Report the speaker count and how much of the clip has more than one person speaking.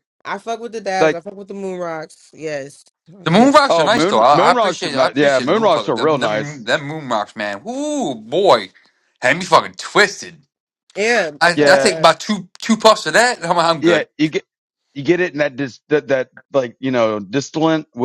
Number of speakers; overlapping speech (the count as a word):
three, about 22%